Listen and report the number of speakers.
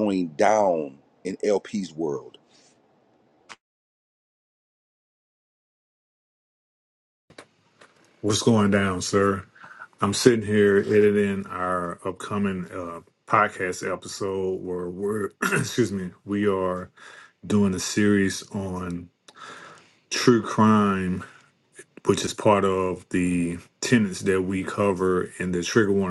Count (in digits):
2